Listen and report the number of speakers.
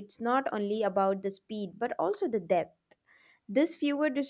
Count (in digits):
1